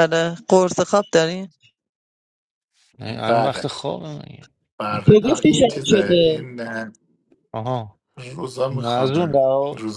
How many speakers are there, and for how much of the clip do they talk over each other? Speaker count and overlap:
3, about 26%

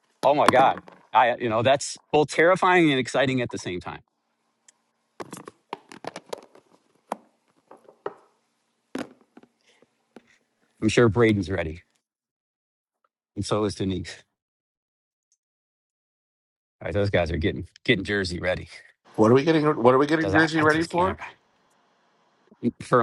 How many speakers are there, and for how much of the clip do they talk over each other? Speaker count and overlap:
2, about 4%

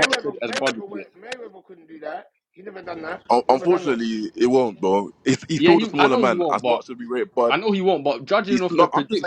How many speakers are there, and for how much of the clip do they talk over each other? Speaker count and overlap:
3, about 41%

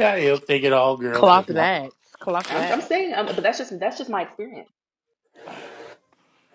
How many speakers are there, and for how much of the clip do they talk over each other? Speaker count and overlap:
3, about 15%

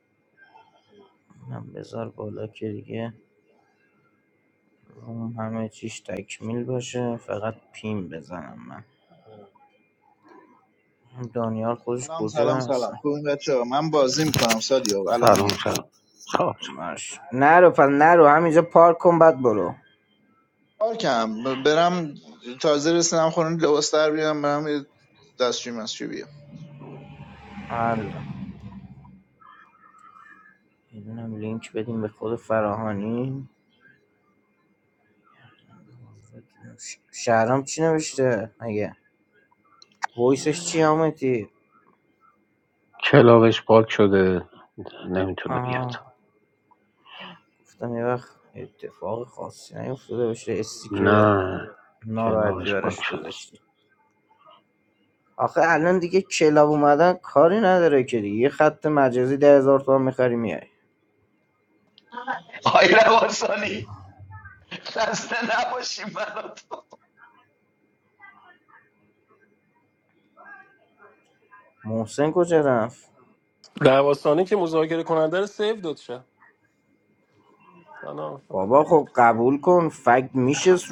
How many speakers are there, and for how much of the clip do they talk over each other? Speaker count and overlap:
5, about 4%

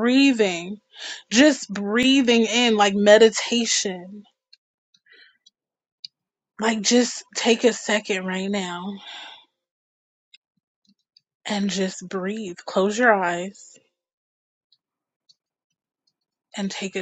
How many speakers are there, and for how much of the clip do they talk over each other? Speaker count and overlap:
1, no overlap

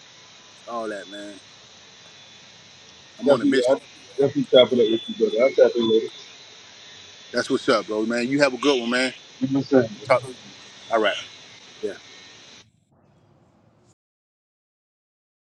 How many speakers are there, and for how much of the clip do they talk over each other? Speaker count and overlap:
2, about 3%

